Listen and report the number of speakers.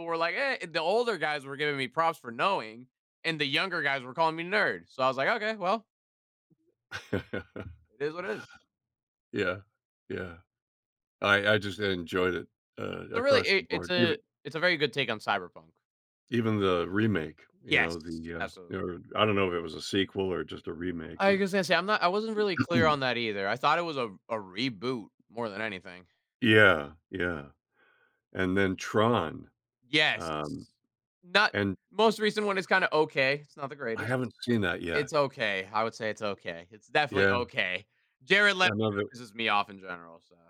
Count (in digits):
2